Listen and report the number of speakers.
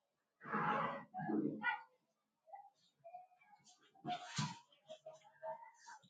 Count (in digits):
0